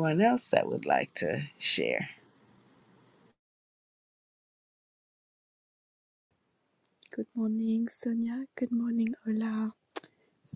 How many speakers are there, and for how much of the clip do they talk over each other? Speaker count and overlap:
2, no overlap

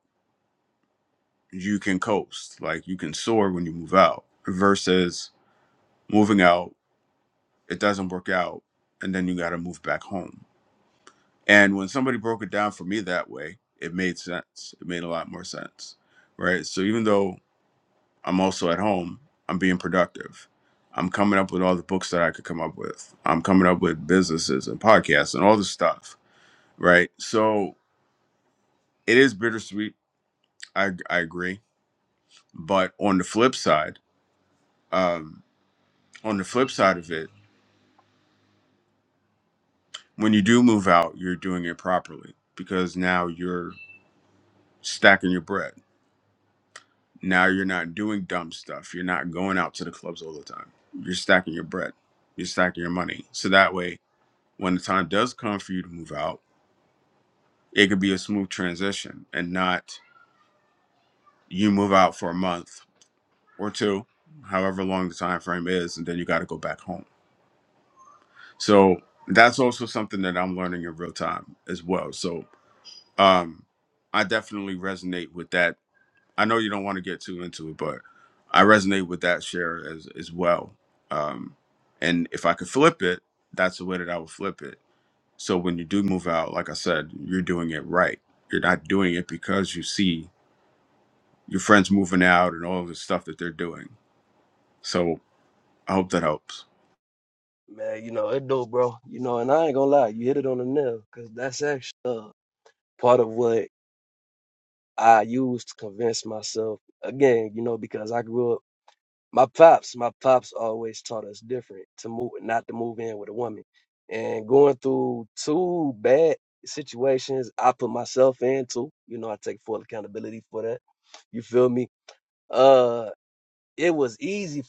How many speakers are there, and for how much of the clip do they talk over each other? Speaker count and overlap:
2, no overlap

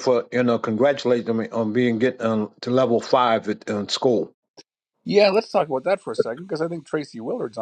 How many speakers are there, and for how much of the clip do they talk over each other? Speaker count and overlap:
2, no overlap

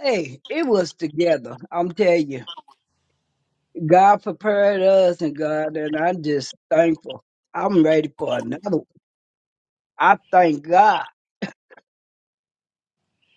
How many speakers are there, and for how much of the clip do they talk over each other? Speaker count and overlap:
1, no overlap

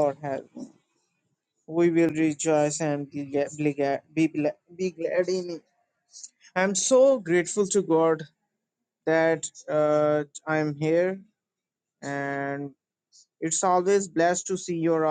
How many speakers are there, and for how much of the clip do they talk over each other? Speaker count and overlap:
1, no overlap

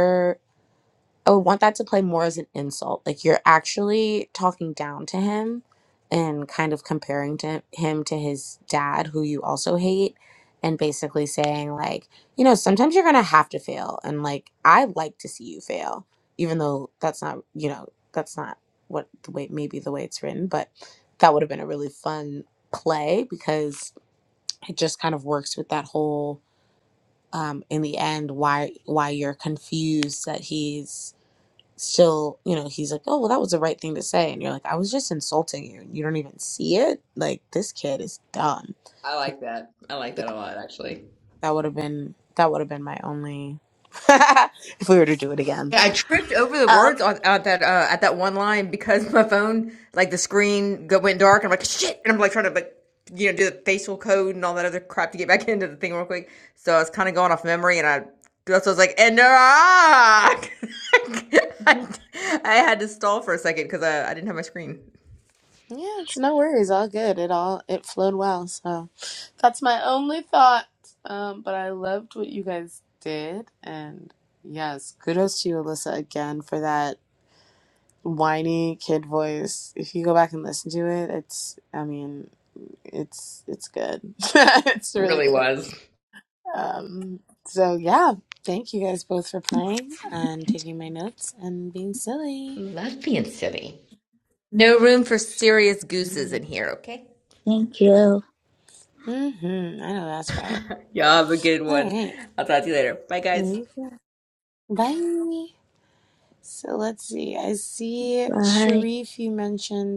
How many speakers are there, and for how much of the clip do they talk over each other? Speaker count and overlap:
3, about 2%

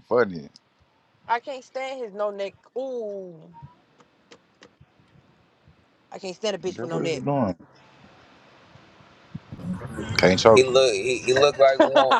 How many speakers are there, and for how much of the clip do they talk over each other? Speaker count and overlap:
3, about 5%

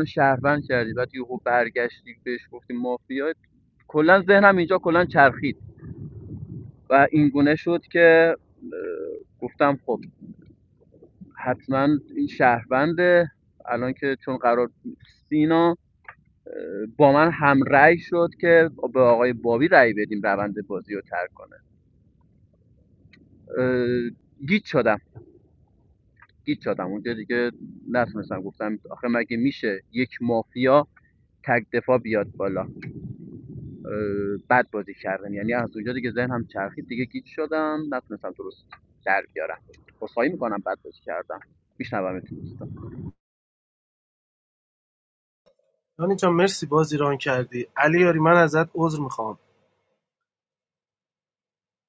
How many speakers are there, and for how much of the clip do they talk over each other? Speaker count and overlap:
2, no overlap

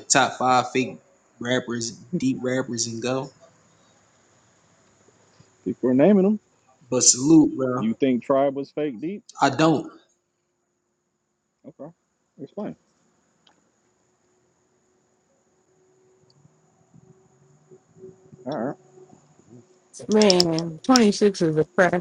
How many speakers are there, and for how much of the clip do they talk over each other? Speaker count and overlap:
3, under 1%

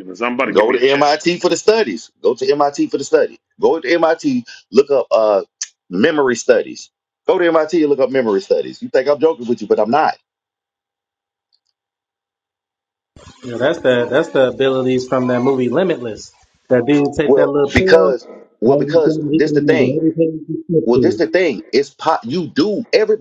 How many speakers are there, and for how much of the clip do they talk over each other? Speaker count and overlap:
3, about 13%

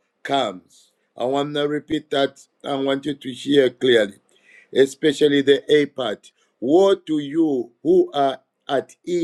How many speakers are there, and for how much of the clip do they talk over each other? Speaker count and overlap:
1, no overlap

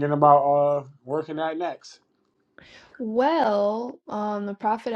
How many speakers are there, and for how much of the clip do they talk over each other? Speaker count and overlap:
2, no overlap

